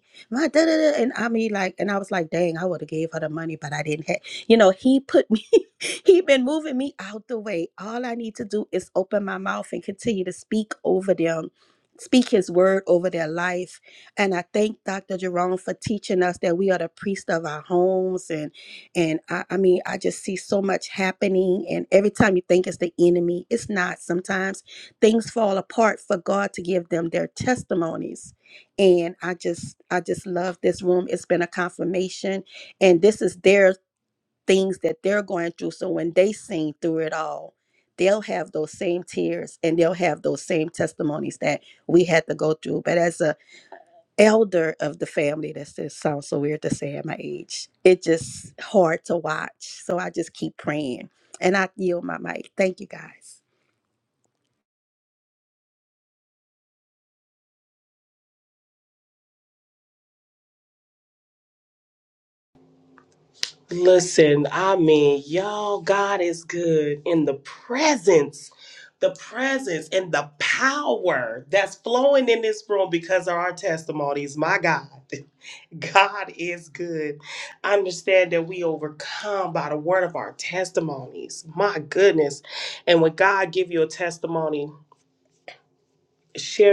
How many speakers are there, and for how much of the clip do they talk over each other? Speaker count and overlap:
2, no overlap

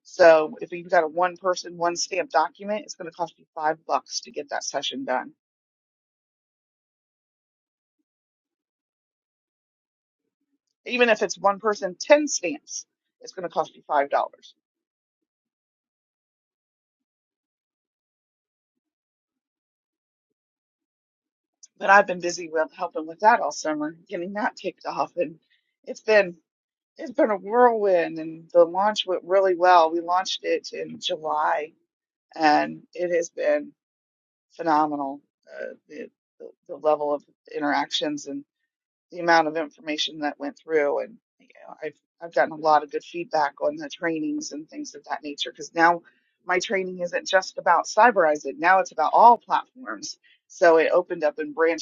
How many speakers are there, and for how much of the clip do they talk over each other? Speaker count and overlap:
1, no overlap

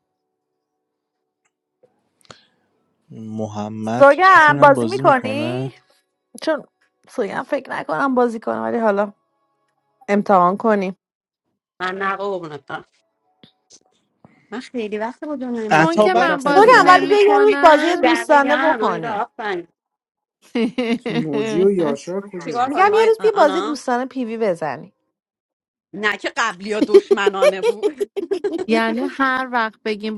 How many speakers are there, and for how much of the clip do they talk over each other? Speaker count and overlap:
5, about 21%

